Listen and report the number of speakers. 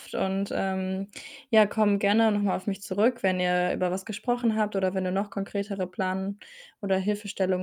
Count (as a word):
one